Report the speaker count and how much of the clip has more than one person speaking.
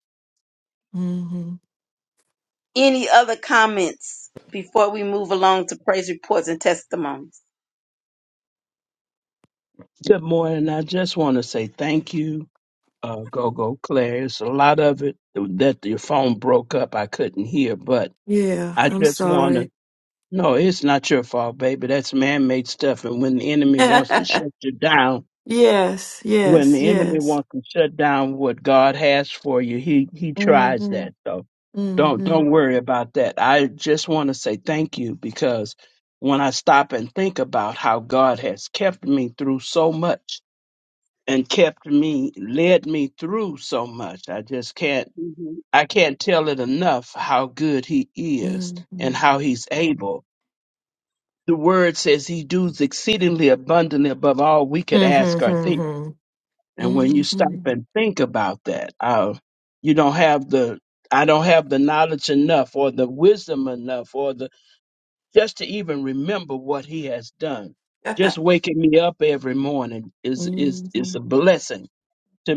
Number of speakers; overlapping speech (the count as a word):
three, about 8%